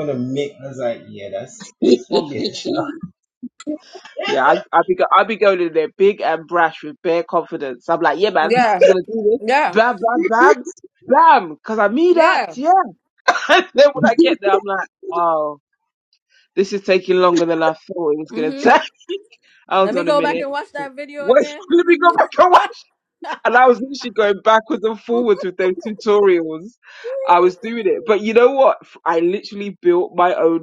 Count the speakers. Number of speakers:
3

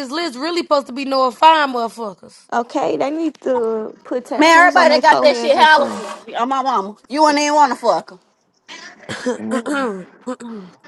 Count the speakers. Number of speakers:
3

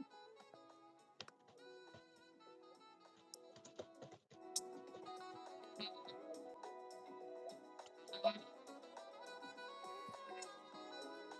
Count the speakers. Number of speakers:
0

